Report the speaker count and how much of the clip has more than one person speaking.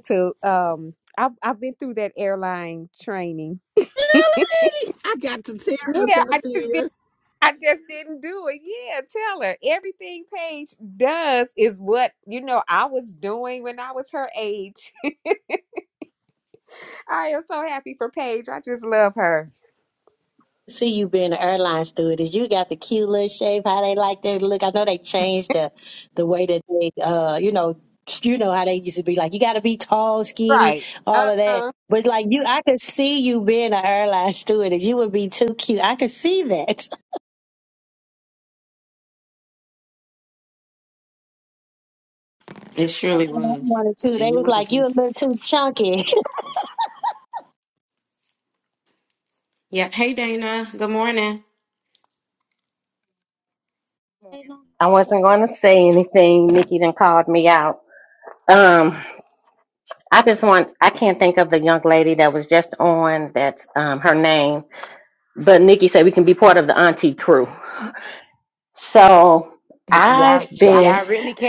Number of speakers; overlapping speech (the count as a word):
six, about 6%